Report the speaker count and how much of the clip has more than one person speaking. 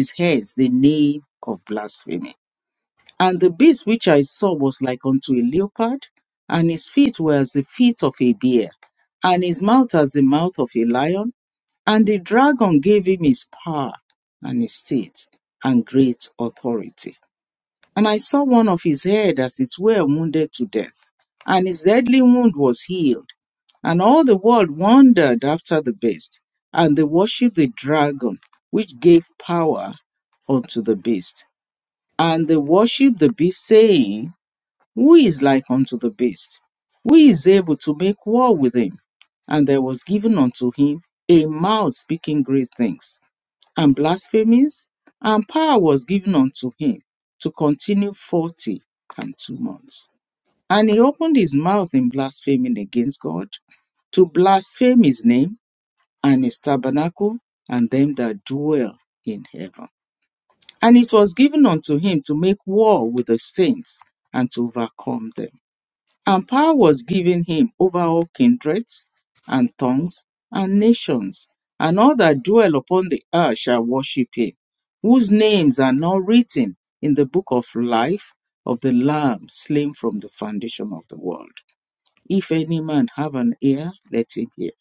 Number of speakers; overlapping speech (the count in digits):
1, no overlap